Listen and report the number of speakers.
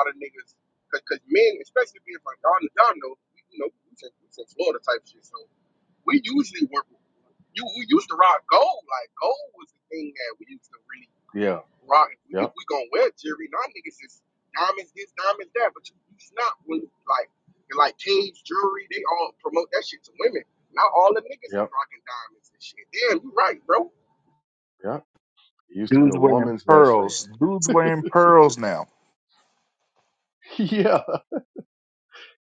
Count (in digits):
3